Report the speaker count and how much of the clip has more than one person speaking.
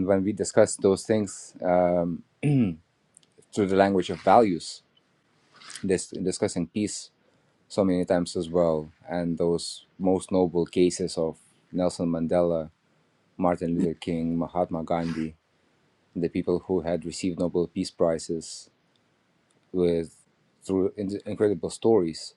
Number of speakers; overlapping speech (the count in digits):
1, no overlap